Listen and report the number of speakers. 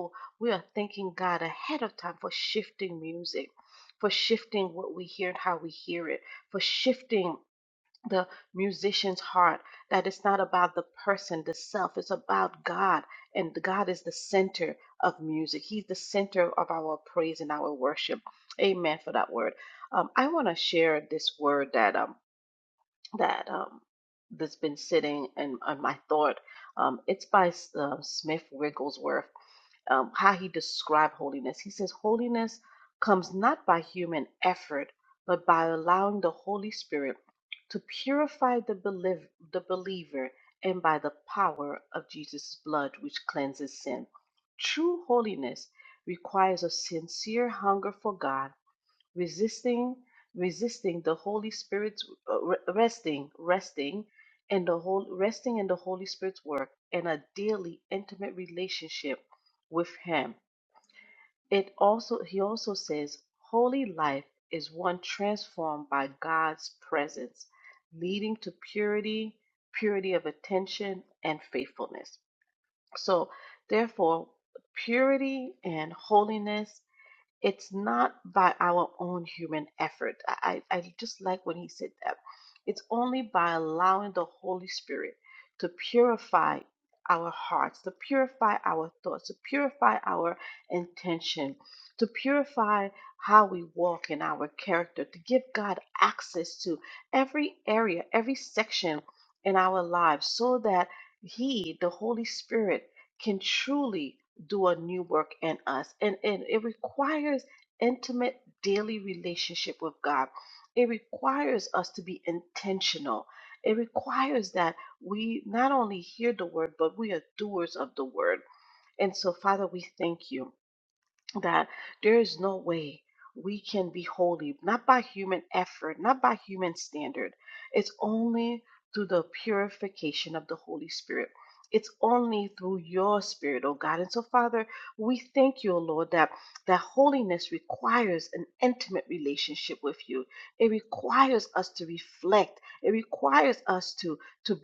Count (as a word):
one